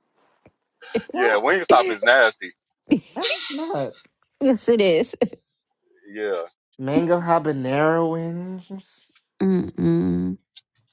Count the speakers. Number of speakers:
three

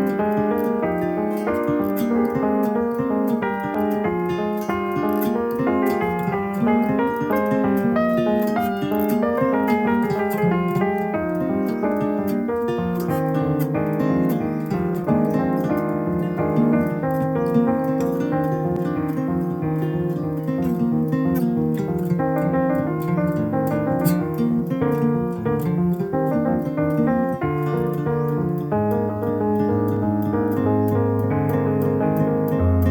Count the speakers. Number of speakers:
zero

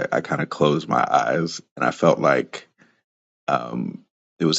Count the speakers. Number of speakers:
one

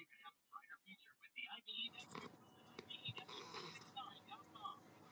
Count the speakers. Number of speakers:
zero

